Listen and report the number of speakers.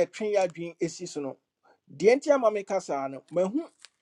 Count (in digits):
1